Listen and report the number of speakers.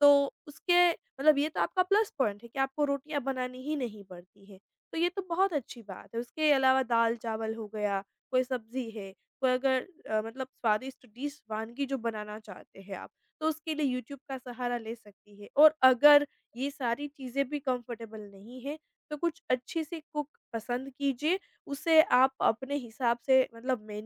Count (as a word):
one